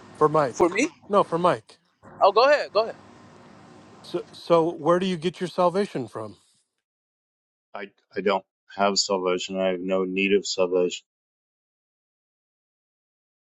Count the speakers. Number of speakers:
three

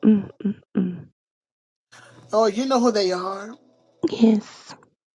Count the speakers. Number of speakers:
two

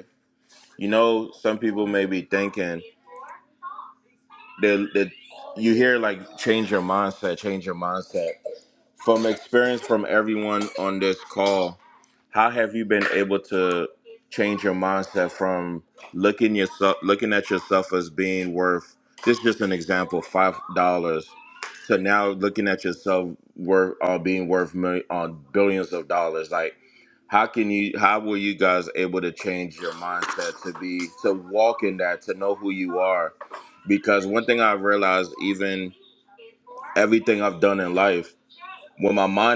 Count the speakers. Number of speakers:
one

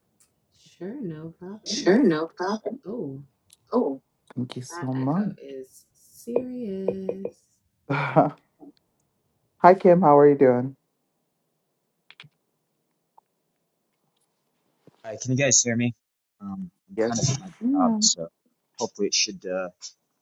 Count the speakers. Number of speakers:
three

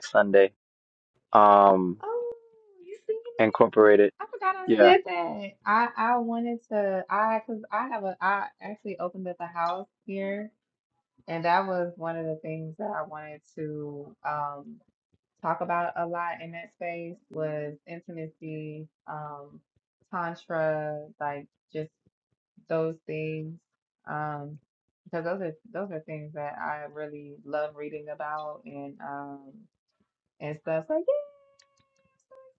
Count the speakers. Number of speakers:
two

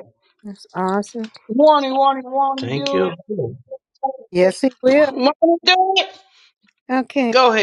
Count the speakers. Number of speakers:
three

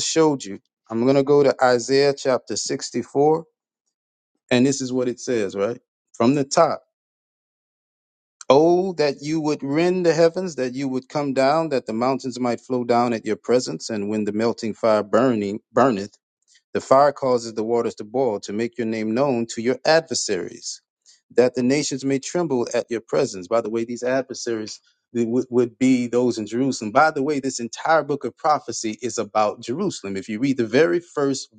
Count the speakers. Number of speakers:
one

